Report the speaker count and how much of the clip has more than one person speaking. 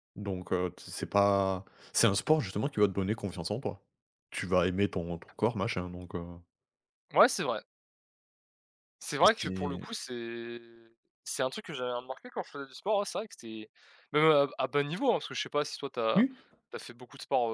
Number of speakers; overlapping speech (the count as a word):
two, about 4%